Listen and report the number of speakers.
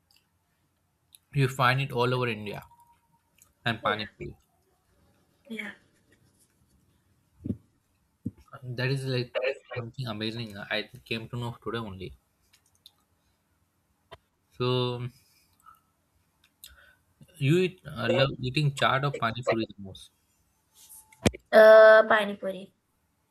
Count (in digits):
2